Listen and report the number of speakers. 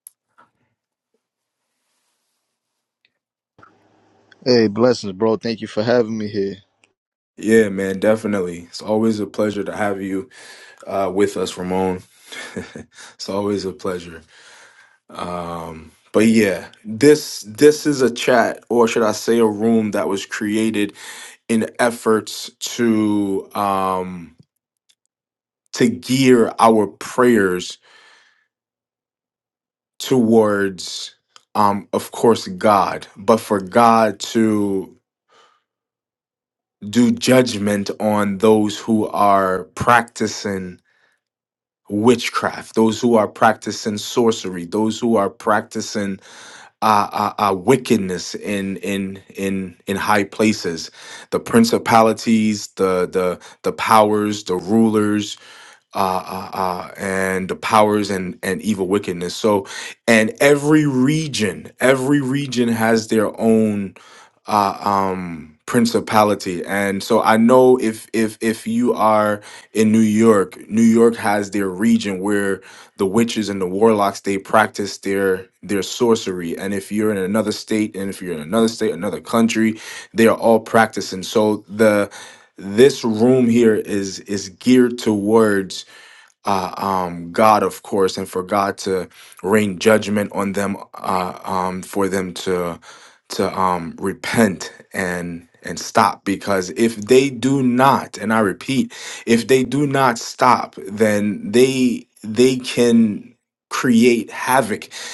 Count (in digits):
2